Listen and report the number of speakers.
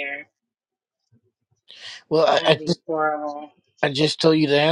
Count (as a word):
two